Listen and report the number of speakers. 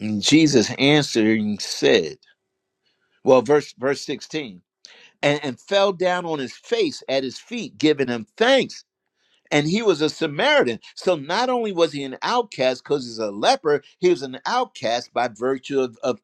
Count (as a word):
one